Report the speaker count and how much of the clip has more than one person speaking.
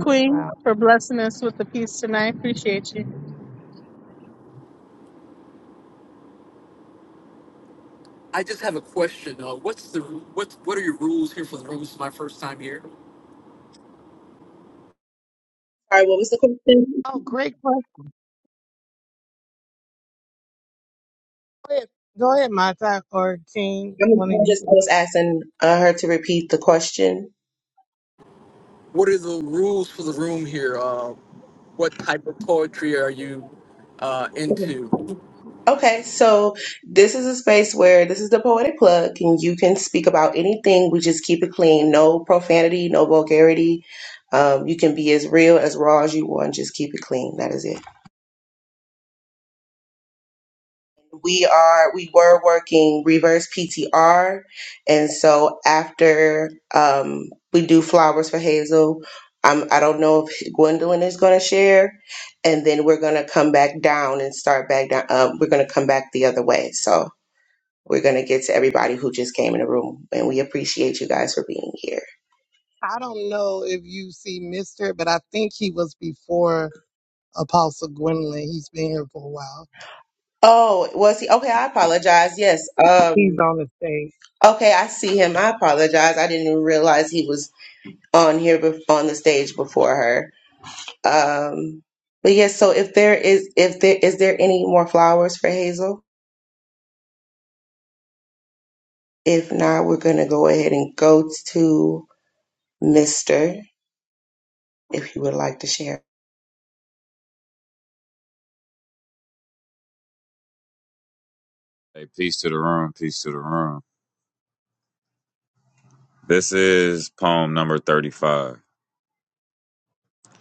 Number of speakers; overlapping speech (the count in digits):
5, about 1%